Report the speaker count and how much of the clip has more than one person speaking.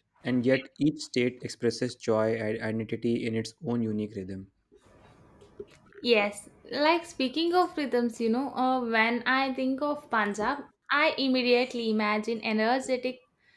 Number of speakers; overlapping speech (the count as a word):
two, no overlap